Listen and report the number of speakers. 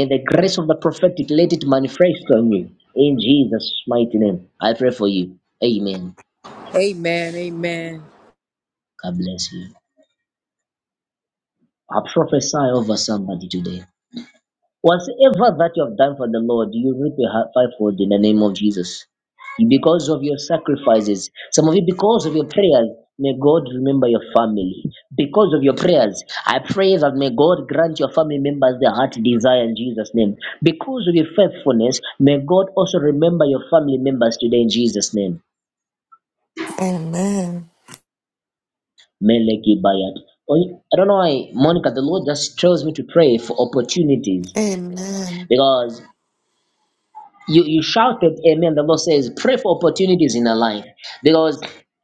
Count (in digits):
3